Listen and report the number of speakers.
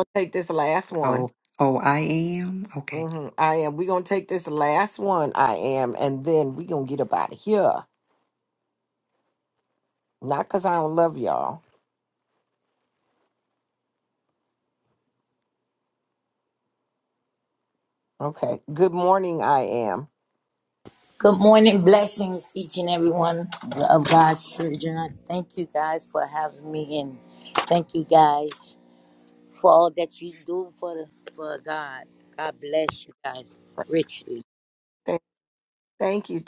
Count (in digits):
3